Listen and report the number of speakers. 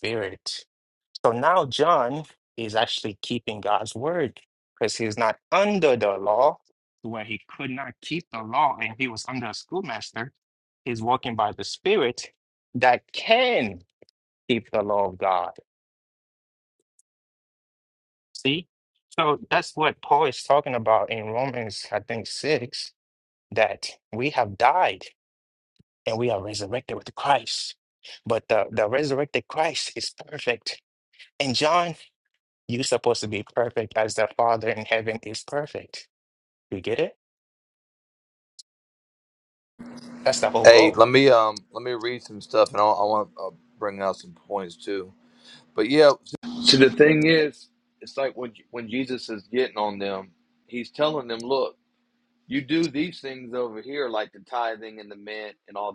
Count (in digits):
2